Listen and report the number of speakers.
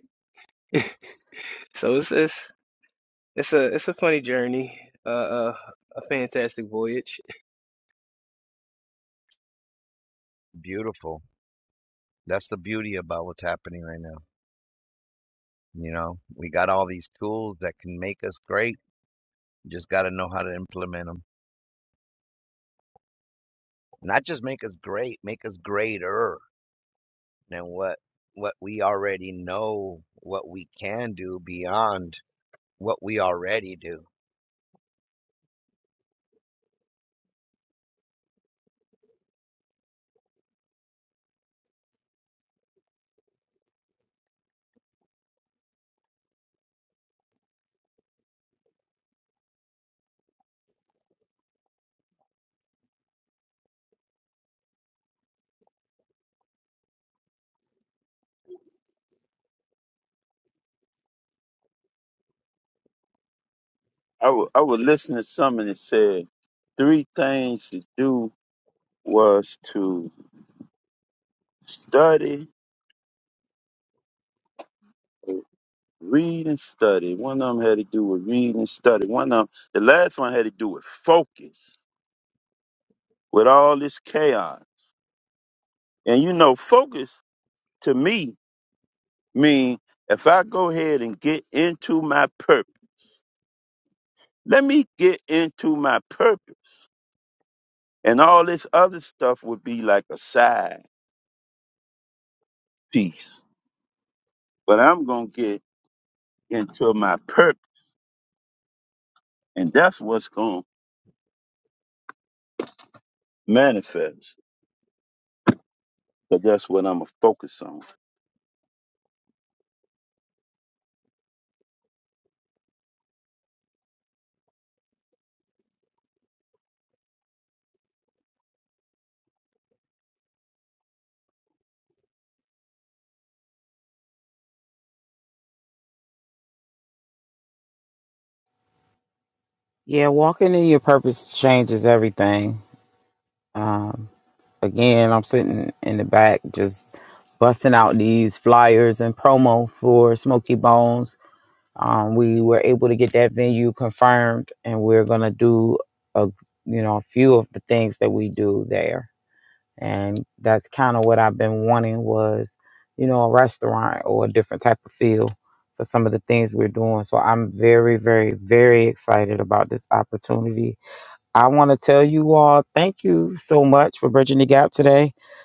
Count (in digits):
4